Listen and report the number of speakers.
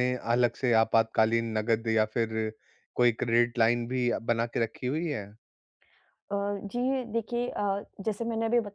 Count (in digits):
2